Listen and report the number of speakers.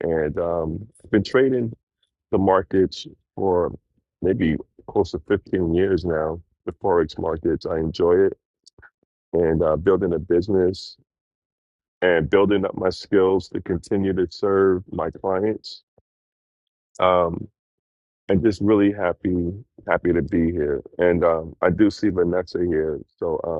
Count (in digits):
1